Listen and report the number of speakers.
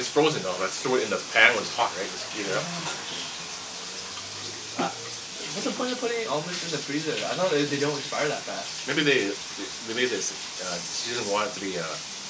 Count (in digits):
2